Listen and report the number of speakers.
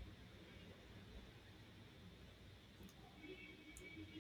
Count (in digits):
0